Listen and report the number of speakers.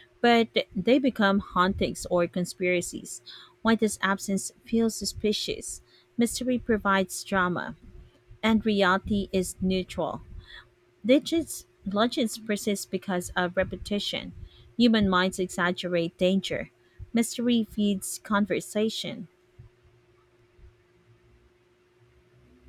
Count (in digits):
1